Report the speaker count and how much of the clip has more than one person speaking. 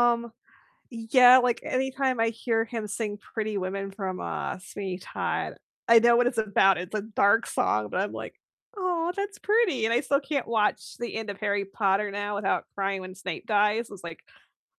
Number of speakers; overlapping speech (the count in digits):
1, no overlap